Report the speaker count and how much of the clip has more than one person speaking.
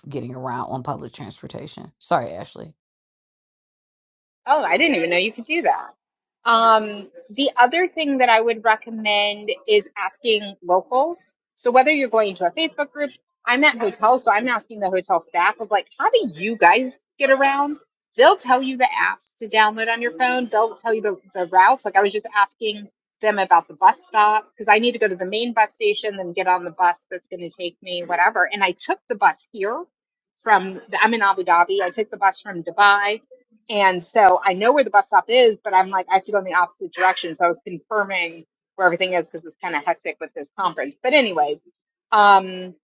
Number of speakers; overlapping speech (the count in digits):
2, no overlap